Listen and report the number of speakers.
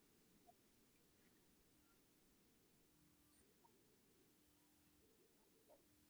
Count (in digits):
0